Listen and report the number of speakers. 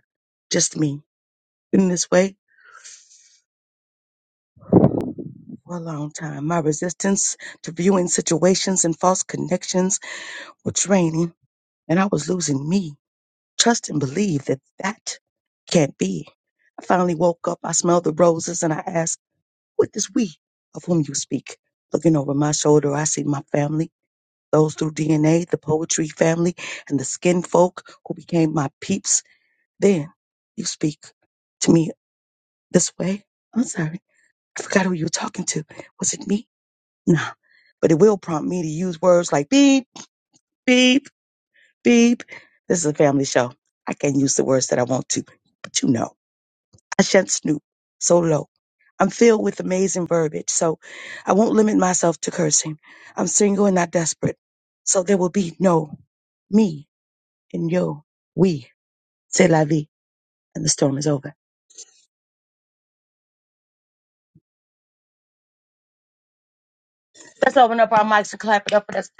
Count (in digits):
1